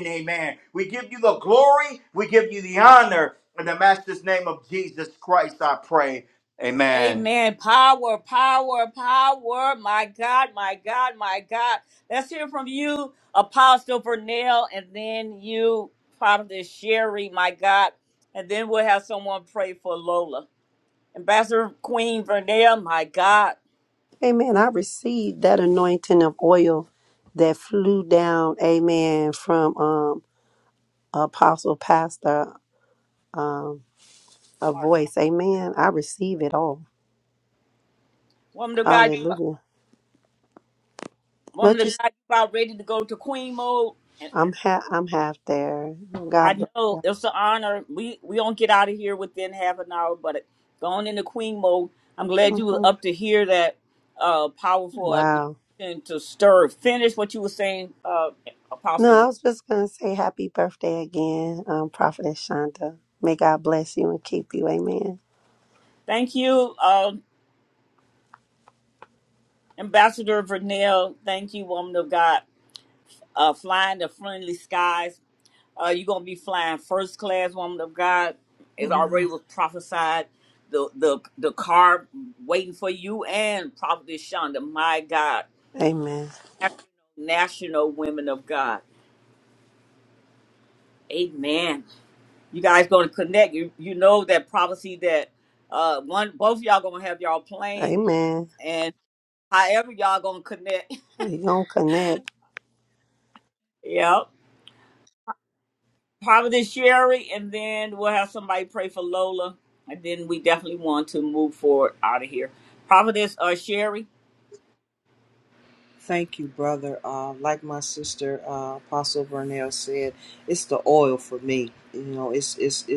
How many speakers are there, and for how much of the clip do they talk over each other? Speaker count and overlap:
4, about 3%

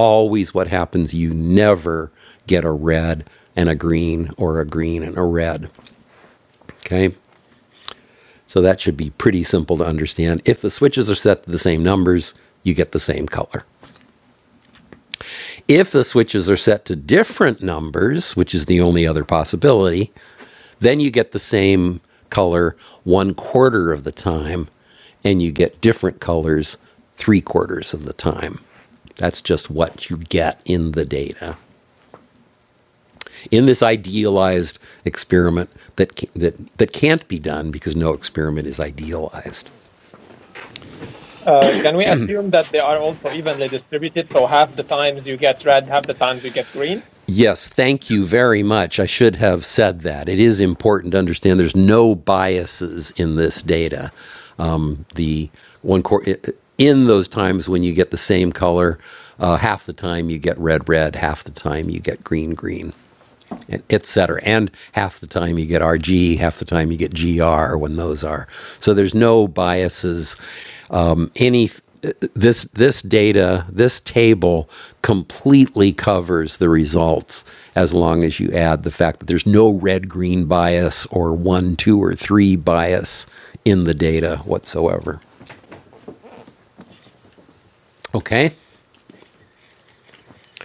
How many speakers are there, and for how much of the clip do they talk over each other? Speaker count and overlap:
2, no overlap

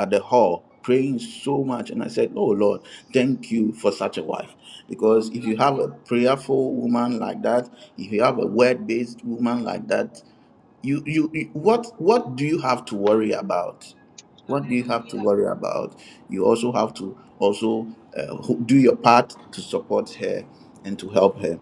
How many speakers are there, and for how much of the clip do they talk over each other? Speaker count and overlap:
1, no overlap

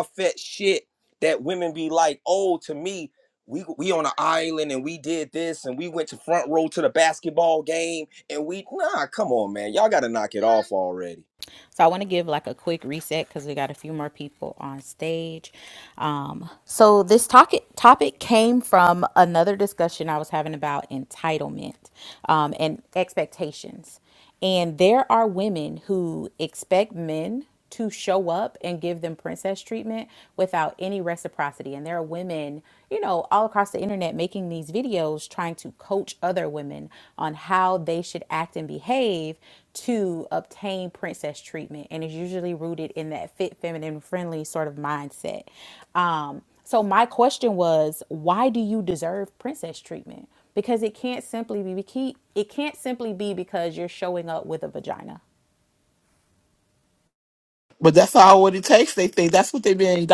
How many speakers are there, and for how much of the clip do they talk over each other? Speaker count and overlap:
3, no overlap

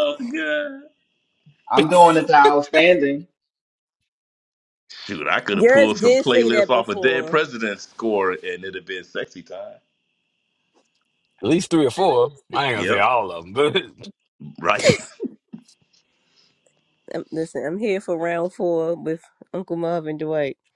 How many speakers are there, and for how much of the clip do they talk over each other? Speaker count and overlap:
4, about 13%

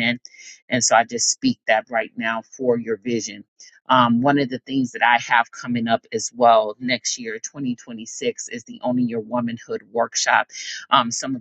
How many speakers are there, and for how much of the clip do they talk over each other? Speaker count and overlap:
1, no overlap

